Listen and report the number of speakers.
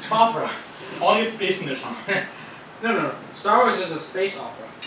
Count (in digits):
2